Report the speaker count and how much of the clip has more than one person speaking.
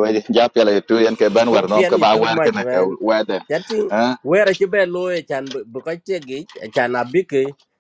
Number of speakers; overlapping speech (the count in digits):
2, about 16%